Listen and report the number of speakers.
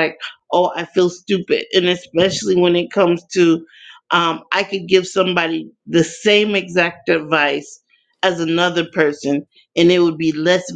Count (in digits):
1